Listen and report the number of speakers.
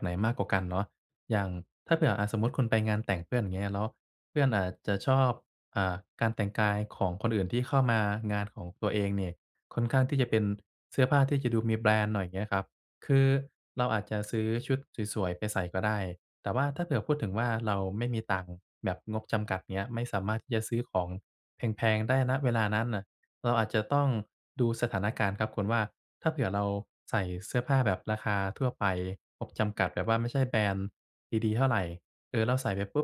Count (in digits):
1